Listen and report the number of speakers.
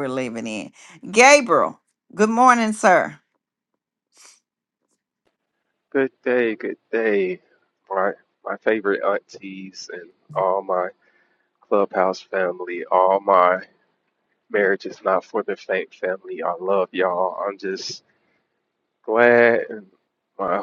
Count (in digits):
2